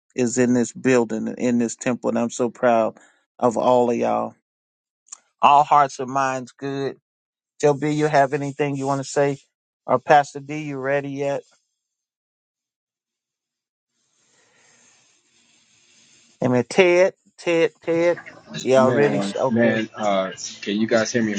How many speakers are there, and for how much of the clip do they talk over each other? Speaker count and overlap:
2, about 5%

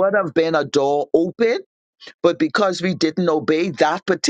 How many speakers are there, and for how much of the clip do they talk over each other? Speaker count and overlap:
1, no overlap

